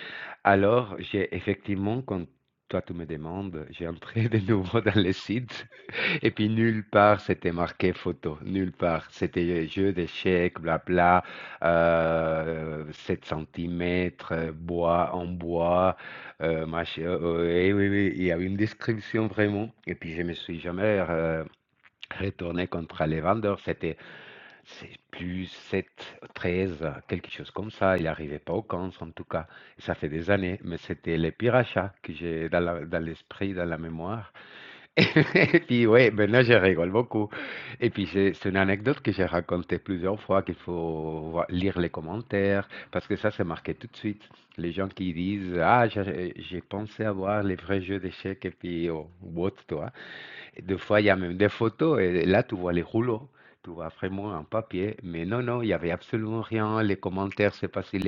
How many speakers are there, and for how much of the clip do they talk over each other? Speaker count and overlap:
1, no overlap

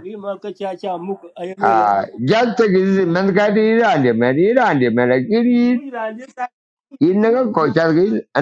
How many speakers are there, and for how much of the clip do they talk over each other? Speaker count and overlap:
2, about 6%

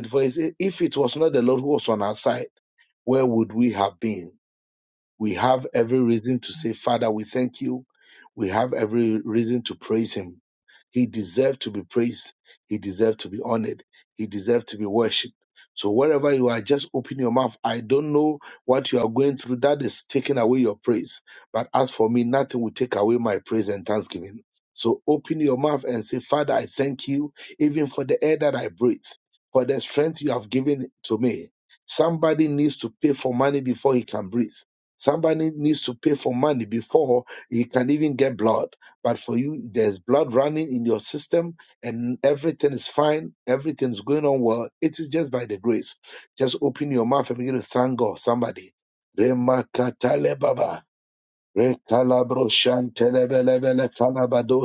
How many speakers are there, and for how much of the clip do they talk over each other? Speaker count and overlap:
1, no overlap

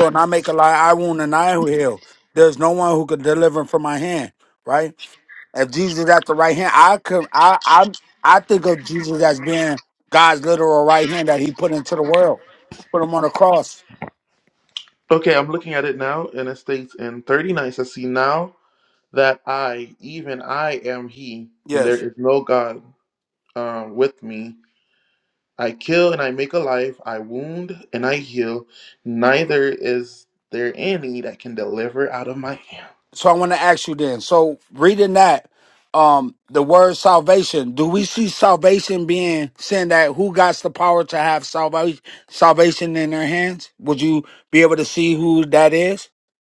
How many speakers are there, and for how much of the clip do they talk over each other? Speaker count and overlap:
2, under 1%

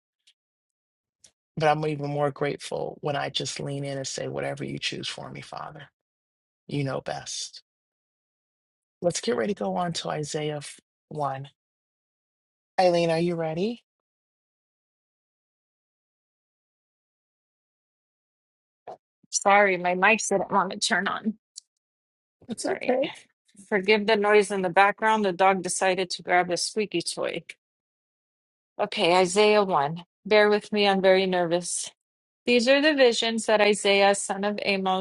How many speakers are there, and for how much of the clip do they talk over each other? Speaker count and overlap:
2, about 1%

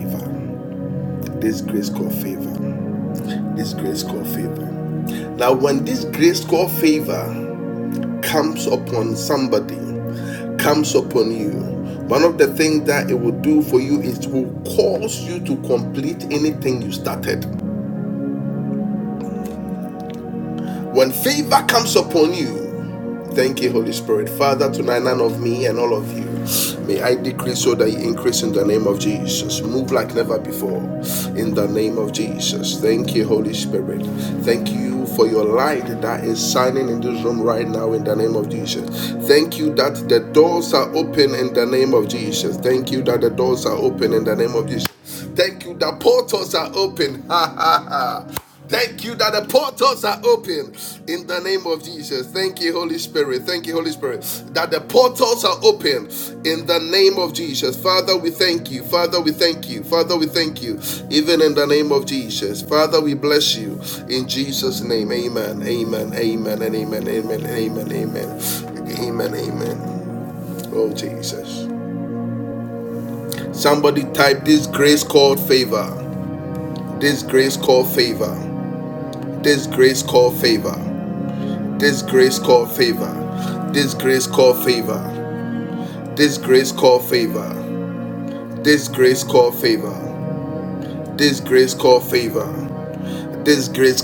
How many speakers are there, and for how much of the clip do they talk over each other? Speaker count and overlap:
1, no overlap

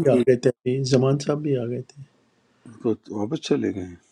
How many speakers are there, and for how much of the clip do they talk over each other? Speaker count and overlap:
2, about 6%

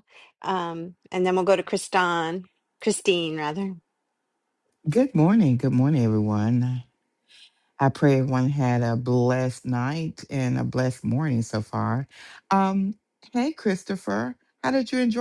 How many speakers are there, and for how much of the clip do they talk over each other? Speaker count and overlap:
2, no overlap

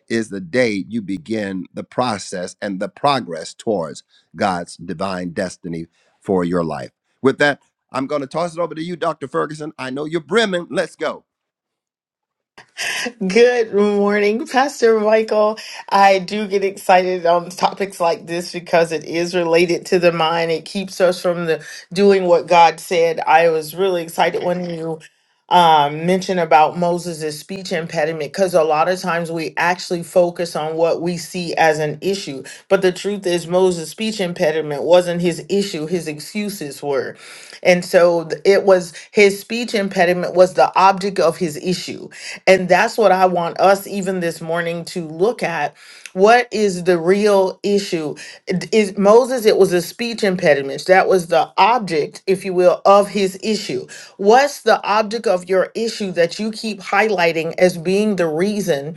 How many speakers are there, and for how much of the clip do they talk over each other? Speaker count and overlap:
2, no overlap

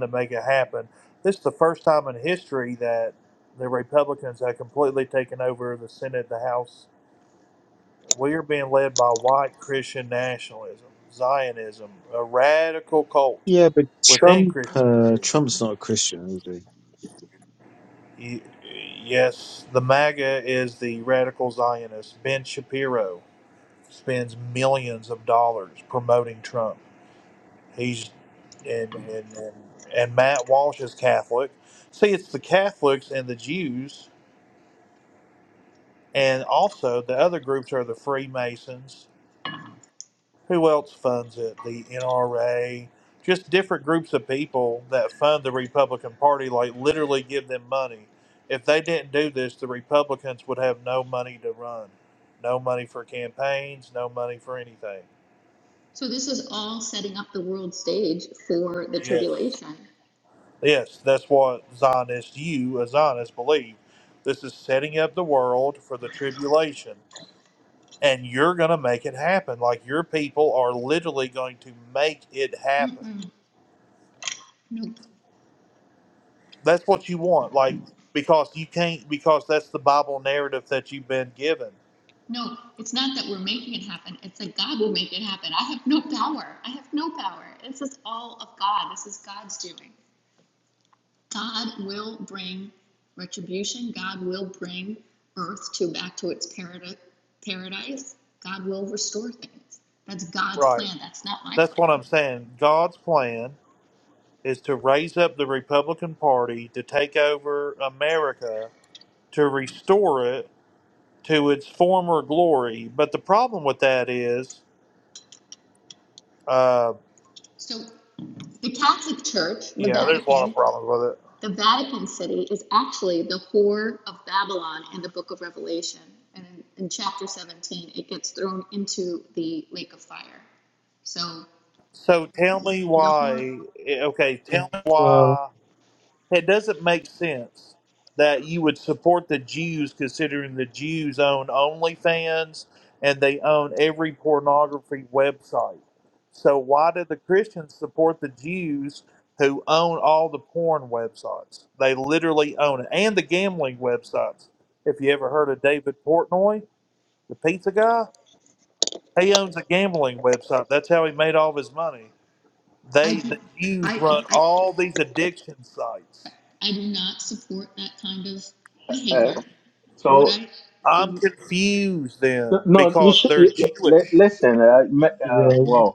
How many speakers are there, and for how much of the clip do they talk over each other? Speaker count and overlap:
4, about 5%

